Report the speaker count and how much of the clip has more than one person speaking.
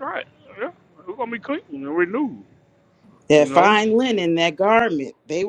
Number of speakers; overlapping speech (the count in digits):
2, about 7%